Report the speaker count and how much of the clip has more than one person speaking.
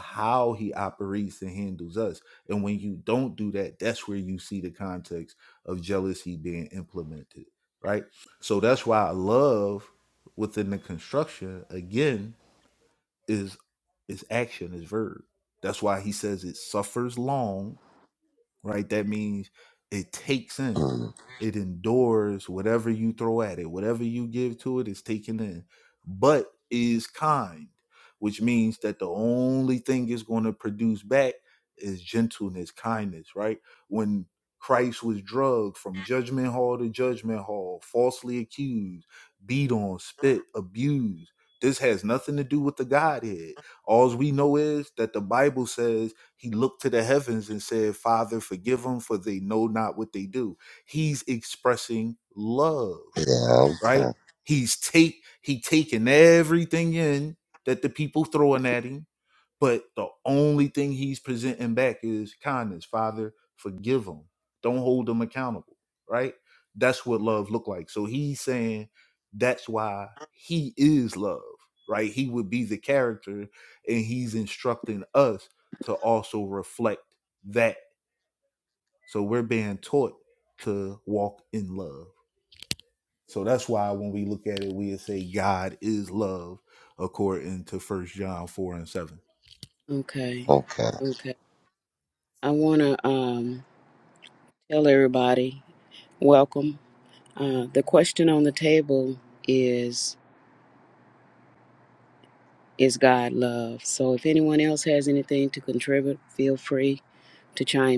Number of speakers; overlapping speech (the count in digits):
3, under 1%